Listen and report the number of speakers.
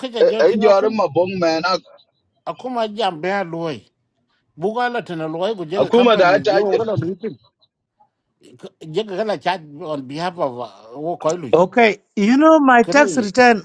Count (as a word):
three